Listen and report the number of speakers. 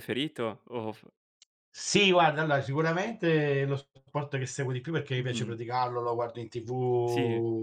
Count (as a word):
two